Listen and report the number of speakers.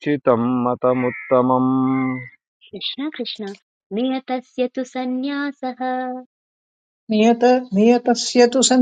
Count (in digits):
3